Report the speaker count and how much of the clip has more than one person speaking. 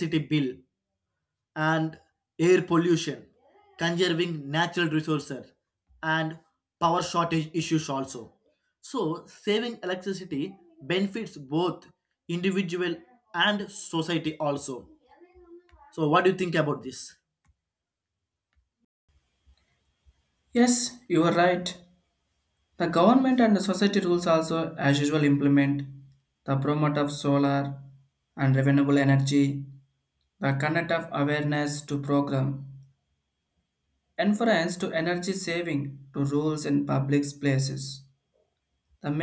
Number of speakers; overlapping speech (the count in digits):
2, no overlap